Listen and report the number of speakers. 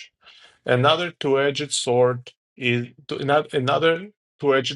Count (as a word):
one